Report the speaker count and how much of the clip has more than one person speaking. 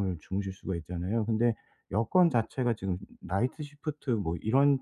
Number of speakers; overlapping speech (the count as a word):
one, no overlap